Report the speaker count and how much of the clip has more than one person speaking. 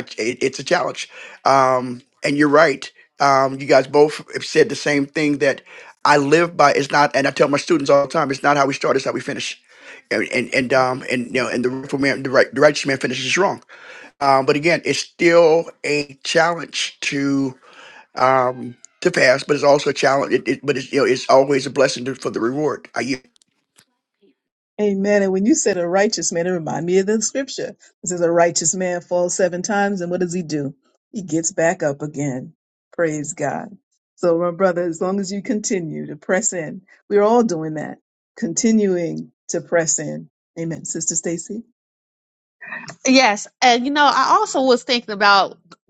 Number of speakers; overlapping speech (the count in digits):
3, no overlap